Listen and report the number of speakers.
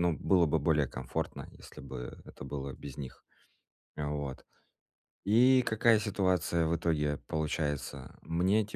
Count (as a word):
one